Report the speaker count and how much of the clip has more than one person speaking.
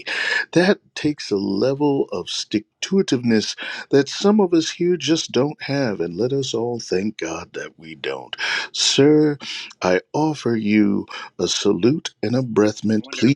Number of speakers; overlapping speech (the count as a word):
one, no overlap